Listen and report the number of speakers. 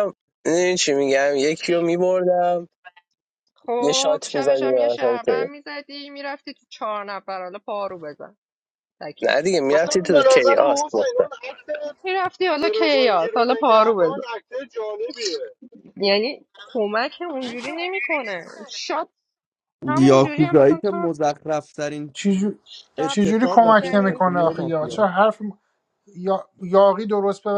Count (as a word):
five